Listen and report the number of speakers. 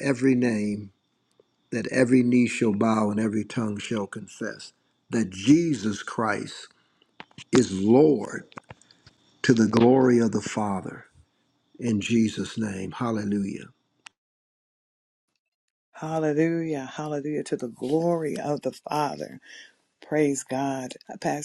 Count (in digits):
2